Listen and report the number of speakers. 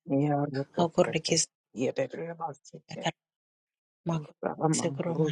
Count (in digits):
2